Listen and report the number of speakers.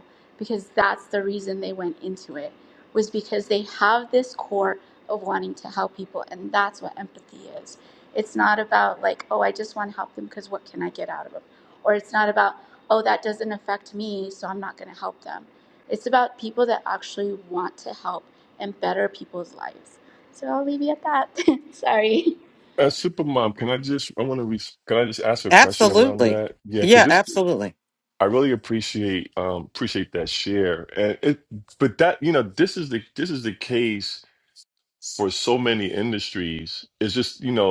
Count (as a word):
three